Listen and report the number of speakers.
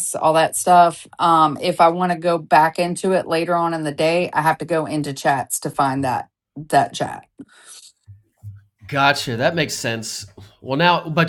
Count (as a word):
two